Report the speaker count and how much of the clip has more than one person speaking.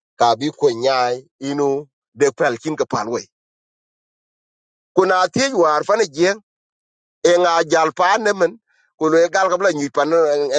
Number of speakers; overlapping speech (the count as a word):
one, no overlap